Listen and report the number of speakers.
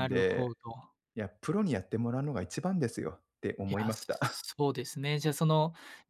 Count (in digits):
2